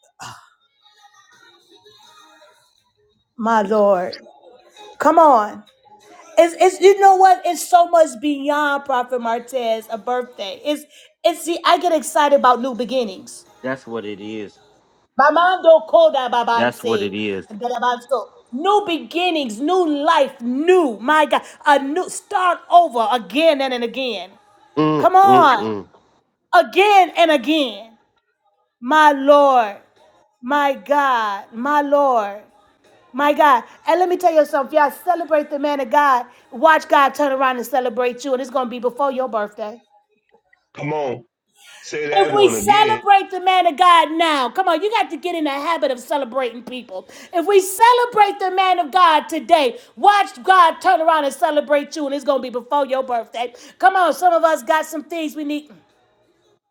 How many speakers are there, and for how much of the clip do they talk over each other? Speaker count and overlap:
3, about 4%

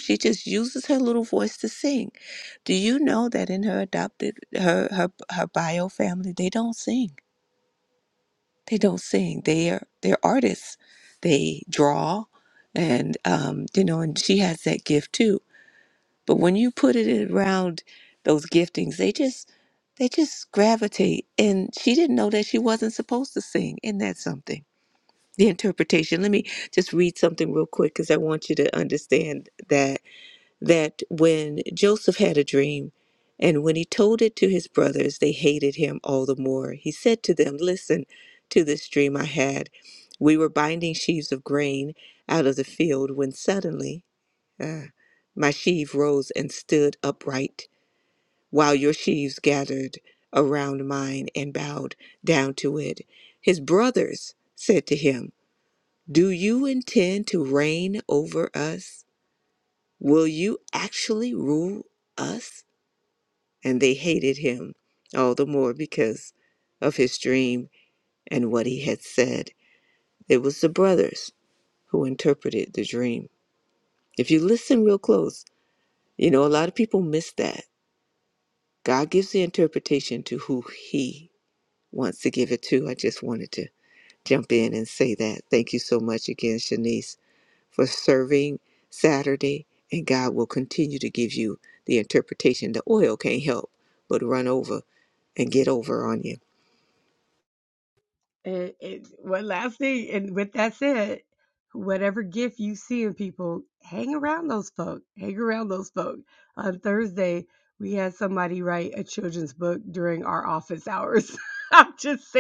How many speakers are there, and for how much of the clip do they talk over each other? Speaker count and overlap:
2, no overlap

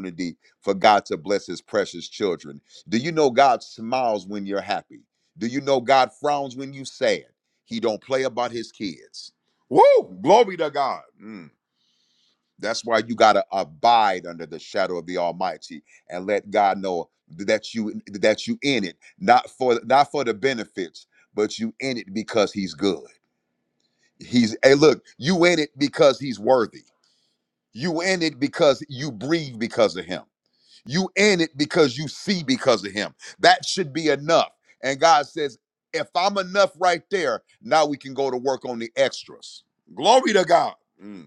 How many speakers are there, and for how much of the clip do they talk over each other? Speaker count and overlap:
1, no overlap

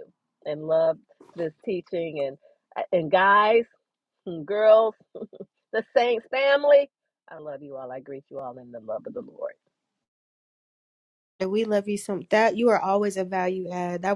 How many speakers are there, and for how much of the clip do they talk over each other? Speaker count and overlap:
2, no overlap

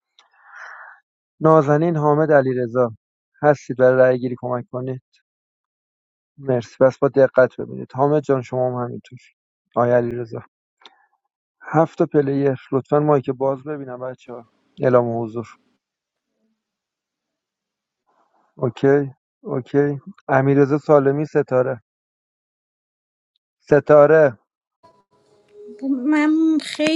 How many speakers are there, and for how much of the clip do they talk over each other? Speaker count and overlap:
2, no overlap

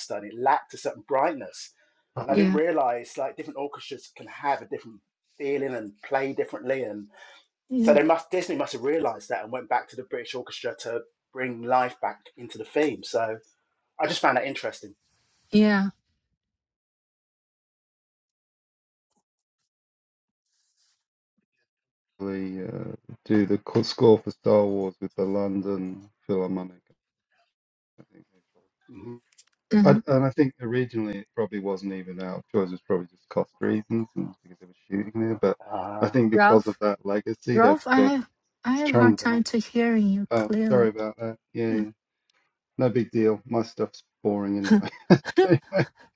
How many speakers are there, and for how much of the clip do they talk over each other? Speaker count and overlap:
3, about 7%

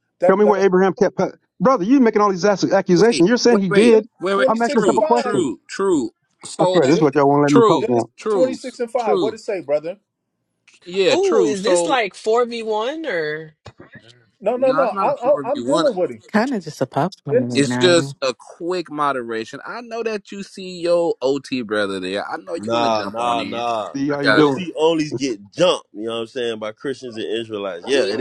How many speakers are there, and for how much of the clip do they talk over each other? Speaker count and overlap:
6, about 32%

